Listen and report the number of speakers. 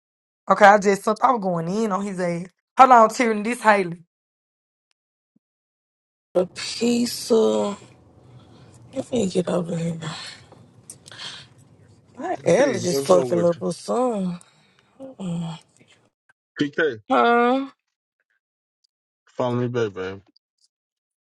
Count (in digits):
3